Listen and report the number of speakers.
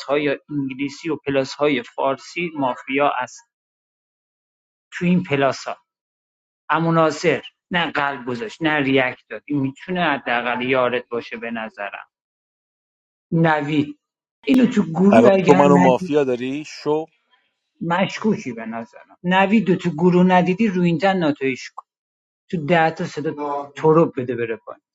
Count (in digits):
2